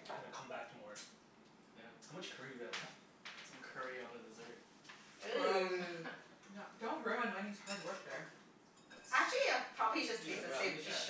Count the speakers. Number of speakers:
4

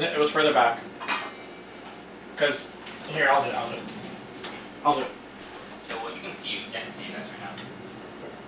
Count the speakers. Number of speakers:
2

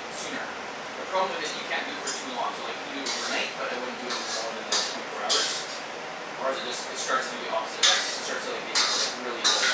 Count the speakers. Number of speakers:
1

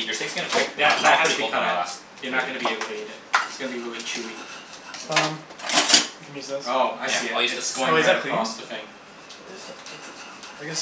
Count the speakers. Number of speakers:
3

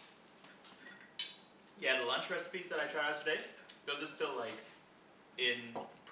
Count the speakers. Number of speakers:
1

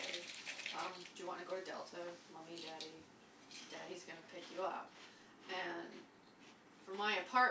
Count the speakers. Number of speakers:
1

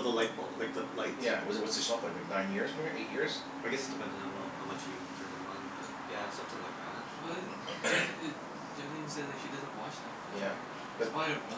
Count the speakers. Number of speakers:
3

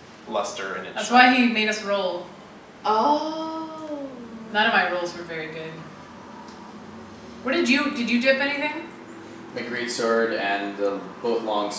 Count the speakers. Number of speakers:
4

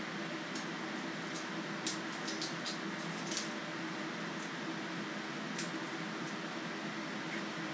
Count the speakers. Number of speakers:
0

